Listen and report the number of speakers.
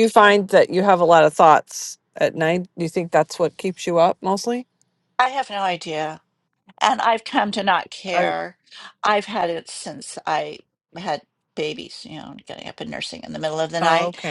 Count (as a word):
two